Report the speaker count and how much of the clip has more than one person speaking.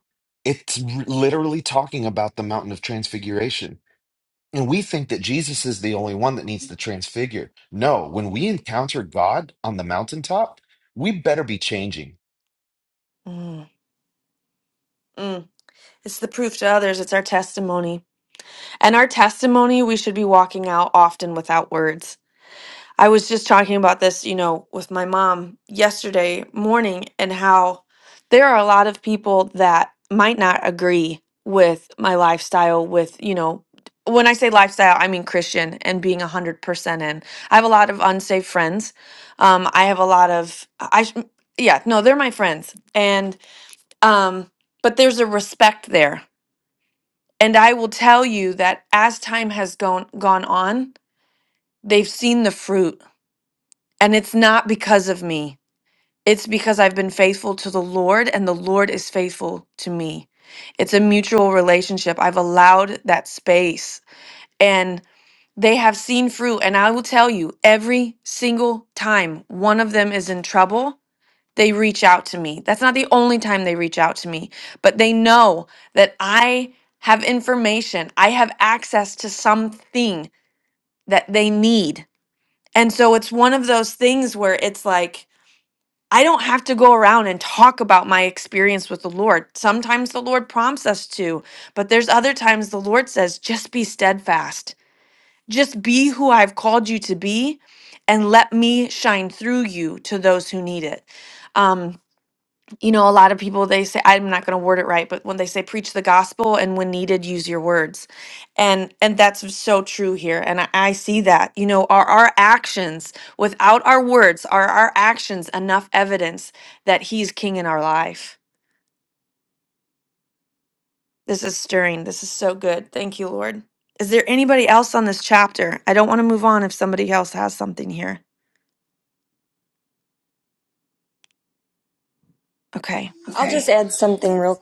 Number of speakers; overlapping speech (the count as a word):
three, no overlap